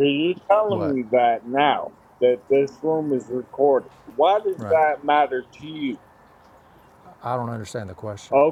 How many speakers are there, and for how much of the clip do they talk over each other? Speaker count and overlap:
two, about 6%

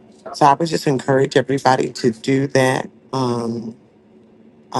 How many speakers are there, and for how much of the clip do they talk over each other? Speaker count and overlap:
one, no overlap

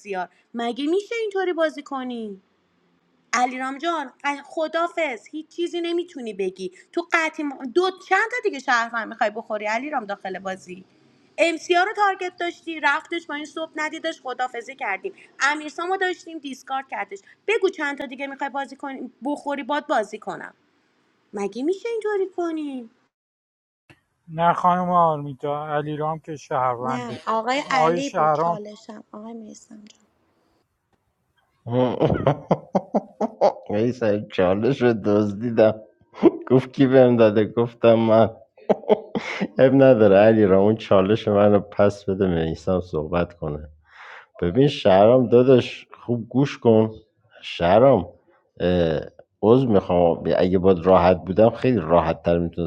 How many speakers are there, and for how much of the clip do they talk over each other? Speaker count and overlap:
three, about 2%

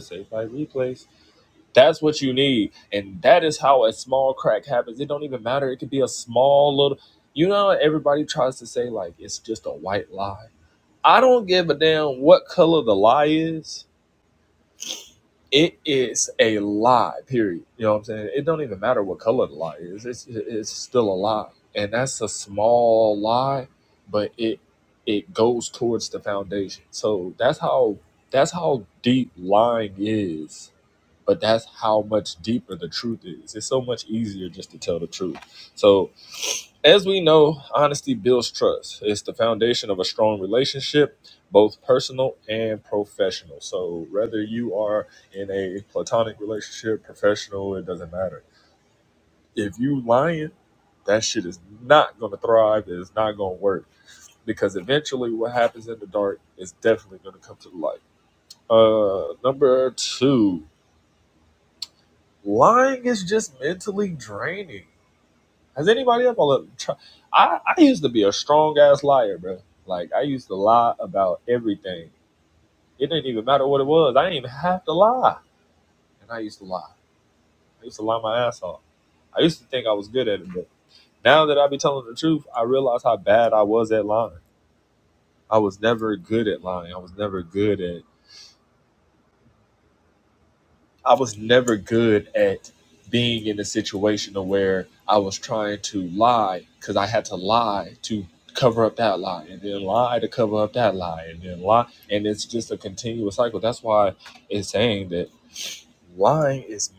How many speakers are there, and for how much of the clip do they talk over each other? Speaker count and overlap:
one, no overlap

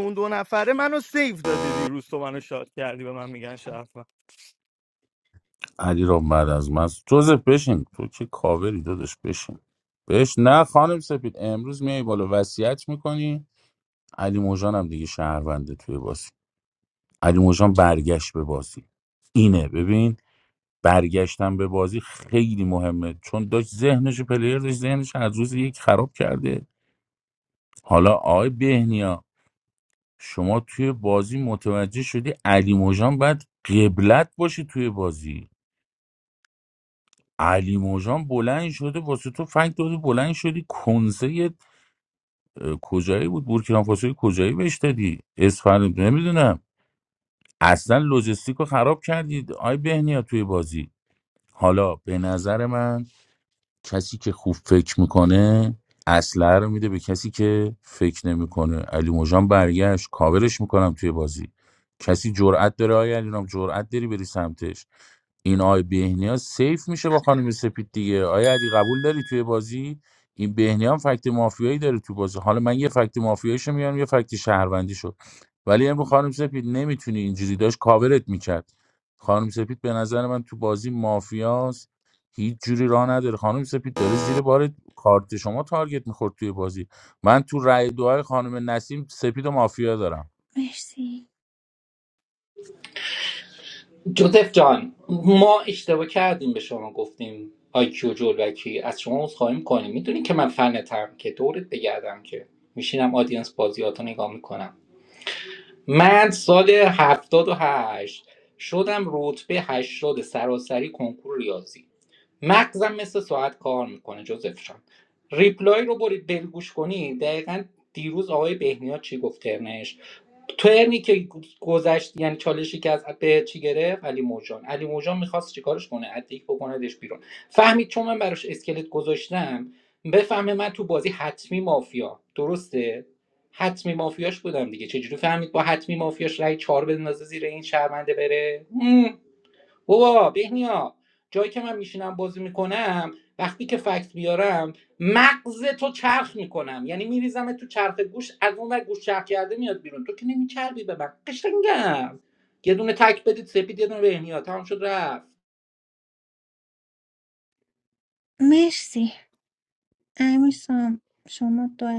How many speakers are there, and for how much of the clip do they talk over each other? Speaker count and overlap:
four, no overlap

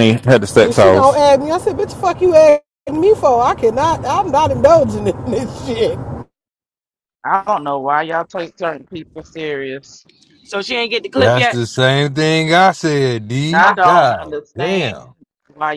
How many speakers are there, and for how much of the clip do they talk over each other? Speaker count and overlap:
five, about 15%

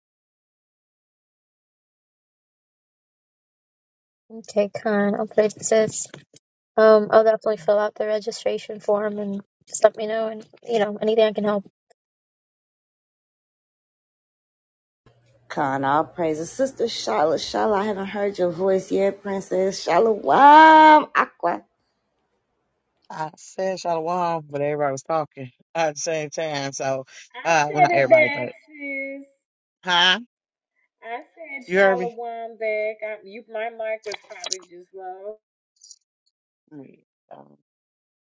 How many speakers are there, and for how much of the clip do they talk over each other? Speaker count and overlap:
four, about 4%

